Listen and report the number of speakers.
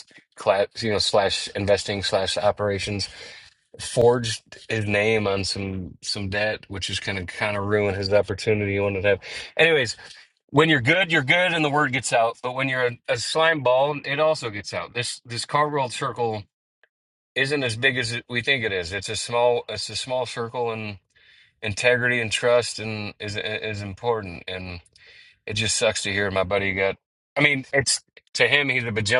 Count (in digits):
1